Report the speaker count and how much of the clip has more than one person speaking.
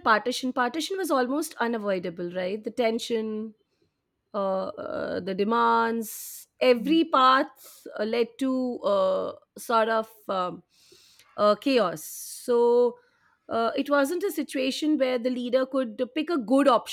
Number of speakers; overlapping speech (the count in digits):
1, no overlap